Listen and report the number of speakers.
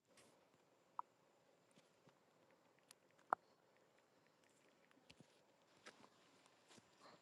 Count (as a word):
zero